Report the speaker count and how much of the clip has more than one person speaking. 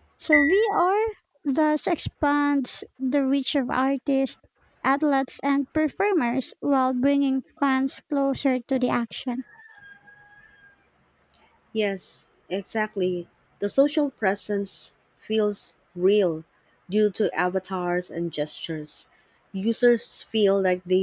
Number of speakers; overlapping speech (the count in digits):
2, no overlap